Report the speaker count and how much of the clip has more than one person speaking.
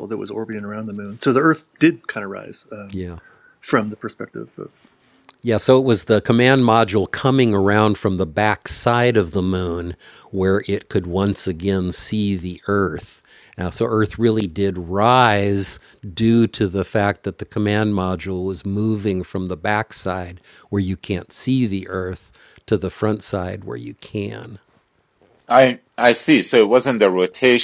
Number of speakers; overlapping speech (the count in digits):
3, no overlap